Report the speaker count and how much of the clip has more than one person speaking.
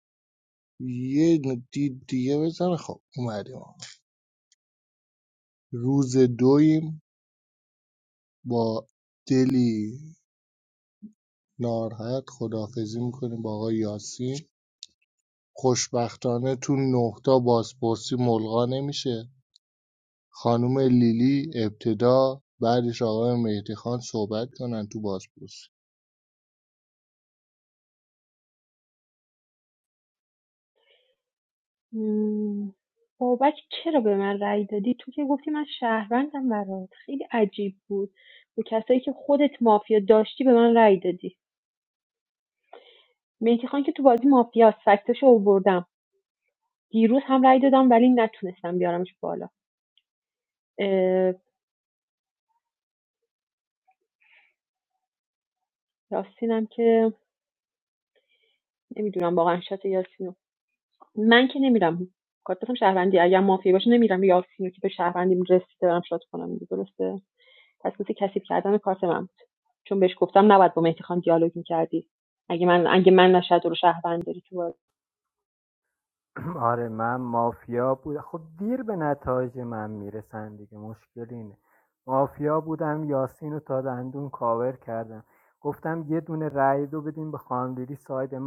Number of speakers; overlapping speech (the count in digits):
3, no overlap